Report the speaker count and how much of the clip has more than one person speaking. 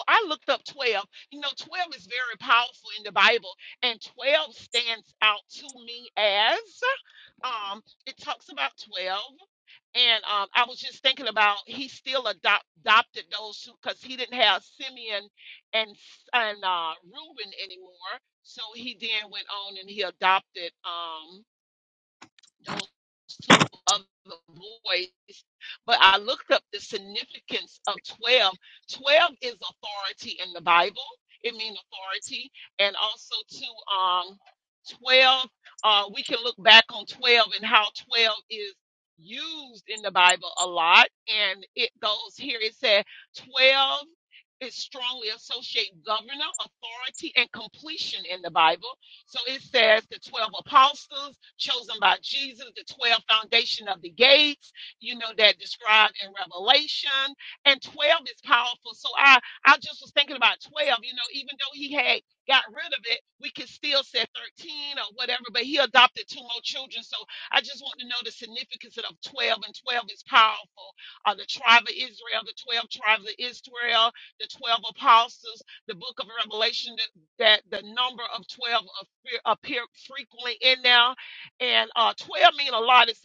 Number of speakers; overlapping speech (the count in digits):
1, no overlap